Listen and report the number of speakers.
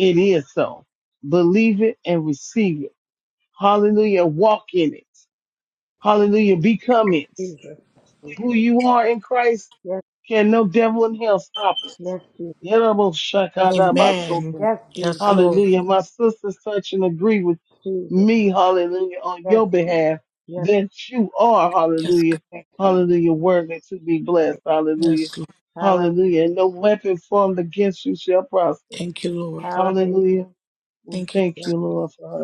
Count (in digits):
3